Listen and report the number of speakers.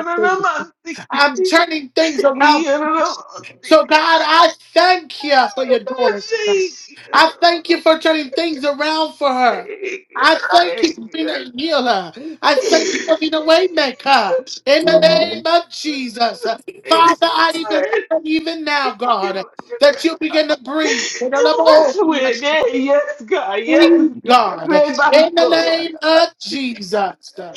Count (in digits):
2